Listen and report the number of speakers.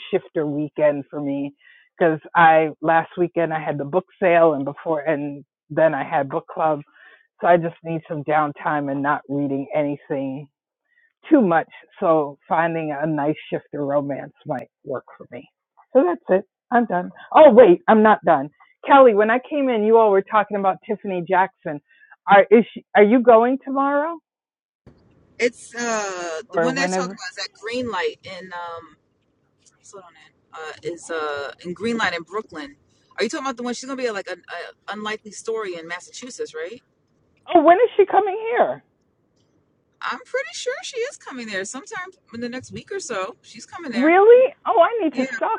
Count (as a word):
two